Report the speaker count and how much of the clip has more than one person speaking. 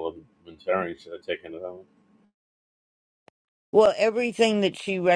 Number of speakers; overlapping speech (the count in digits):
2, no overlap